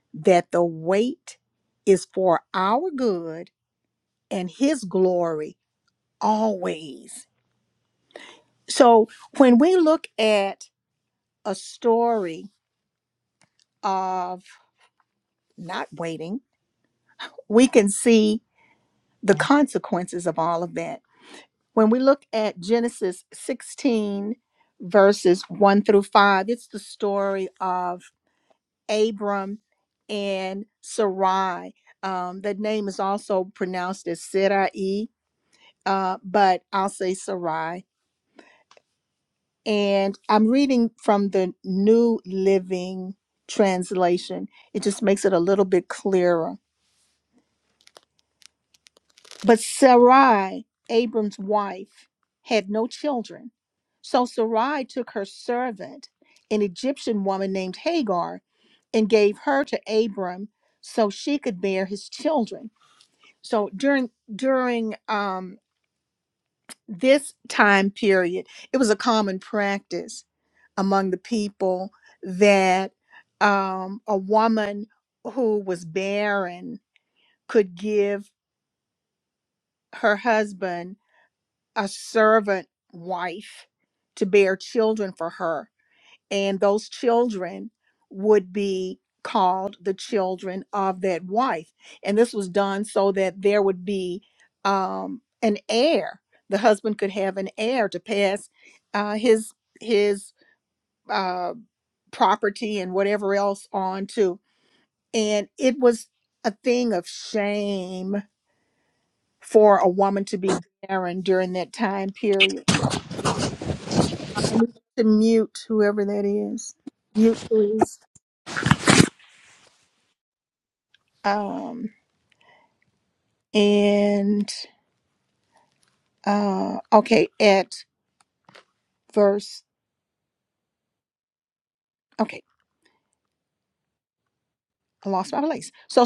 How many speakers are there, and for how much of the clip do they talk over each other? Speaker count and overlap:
1, no overlap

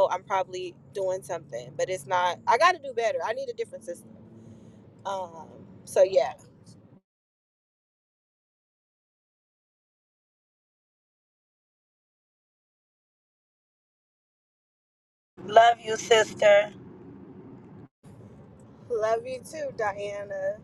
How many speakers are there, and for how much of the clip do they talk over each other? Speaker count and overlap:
2, no overlap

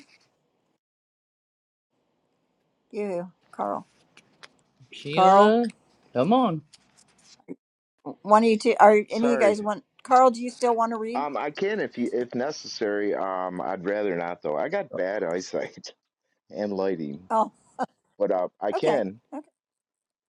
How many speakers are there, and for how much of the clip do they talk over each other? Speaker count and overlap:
3, about 7%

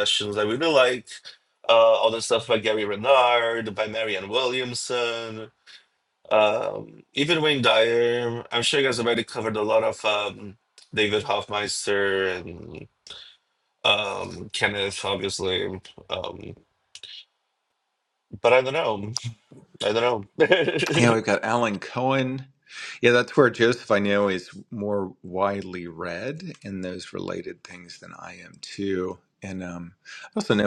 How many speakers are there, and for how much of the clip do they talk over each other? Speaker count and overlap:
2, no overlap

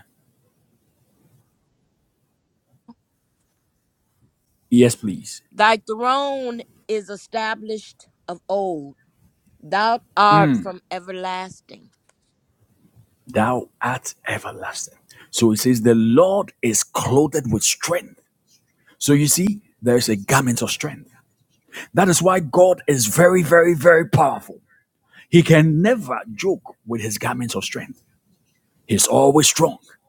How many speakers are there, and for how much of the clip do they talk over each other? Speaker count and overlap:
2, no overlap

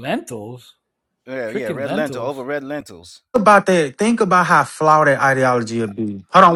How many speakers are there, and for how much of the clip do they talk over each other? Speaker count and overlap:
3, about 14%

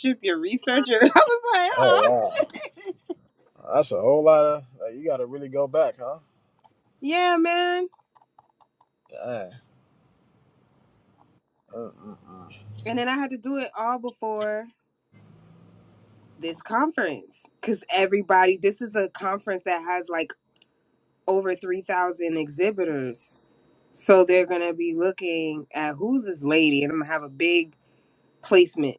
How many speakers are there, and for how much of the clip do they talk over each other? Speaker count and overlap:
2, about 1%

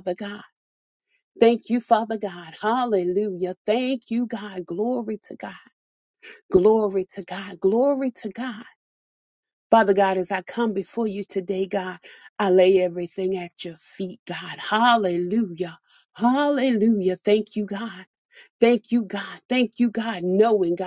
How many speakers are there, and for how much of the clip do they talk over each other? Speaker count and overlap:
1, no overlap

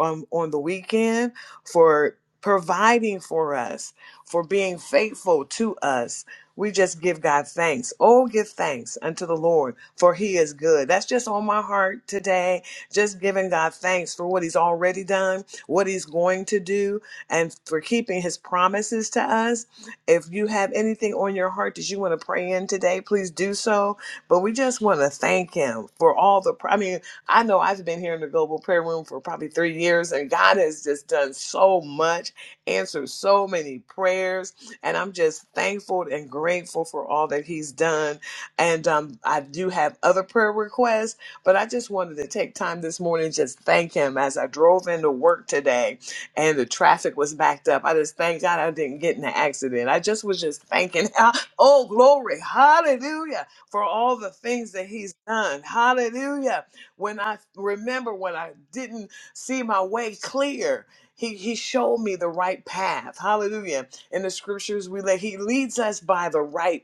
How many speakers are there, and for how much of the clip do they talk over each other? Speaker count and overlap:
1, no overlap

